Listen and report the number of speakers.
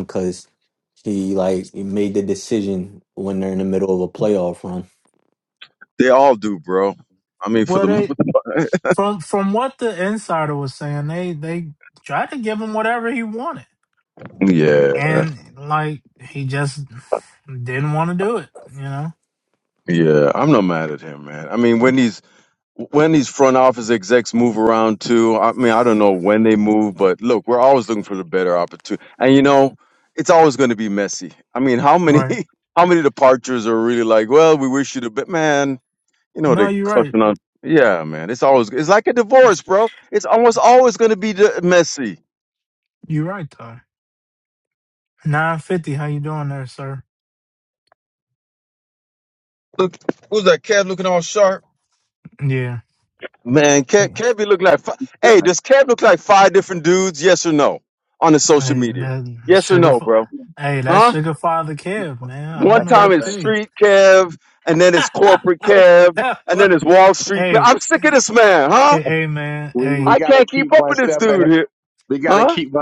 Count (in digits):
4